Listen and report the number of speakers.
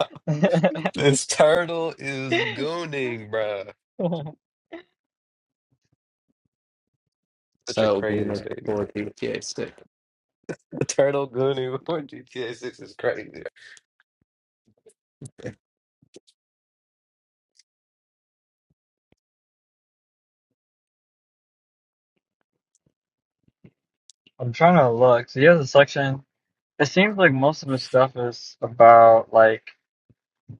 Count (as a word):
three